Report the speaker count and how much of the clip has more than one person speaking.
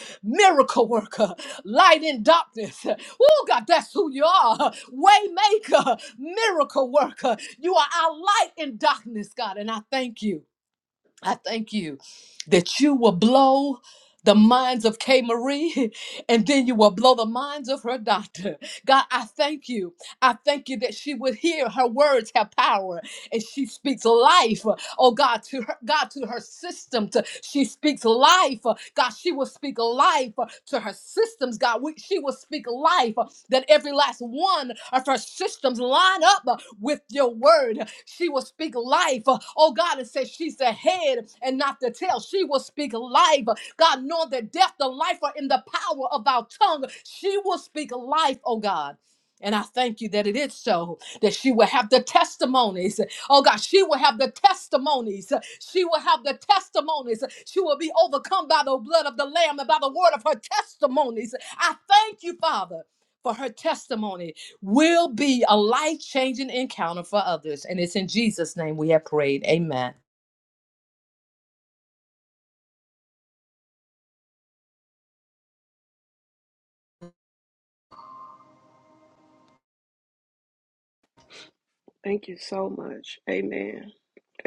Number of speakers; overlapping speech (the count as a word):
two, no overlap